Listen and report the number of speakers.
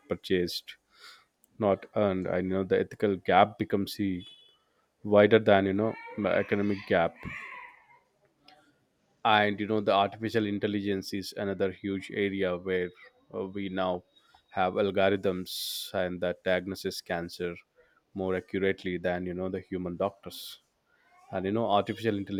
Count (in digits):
1